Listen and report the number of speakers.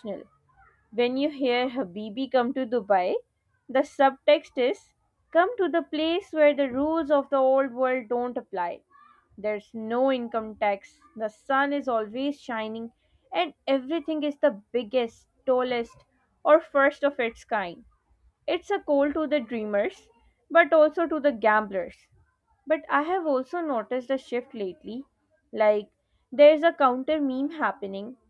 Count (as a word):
one